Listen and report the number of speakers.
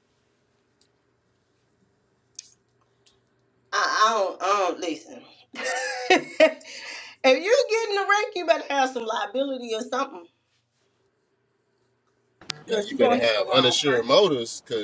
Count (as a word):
two